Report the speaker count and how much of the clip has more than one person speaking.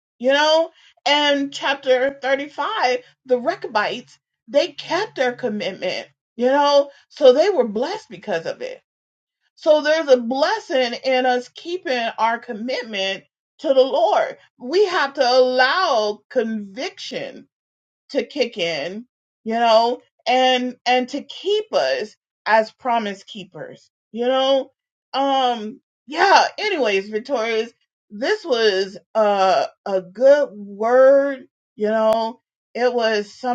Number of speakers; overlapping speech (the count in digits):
1, no overlap